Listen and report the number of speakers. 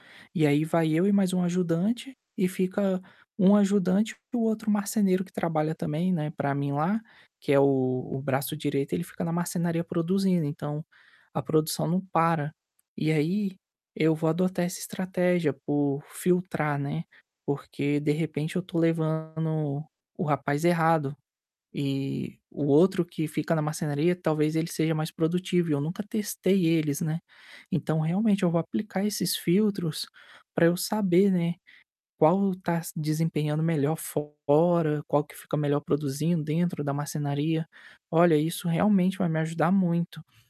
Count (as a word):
one